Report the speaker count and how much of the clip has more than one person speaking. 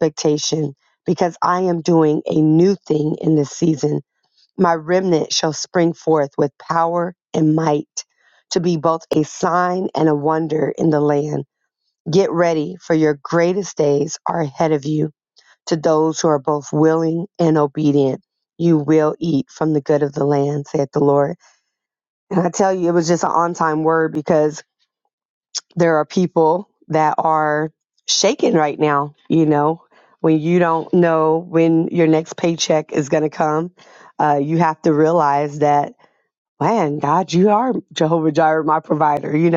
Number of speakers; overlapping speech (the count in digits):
1, no overlap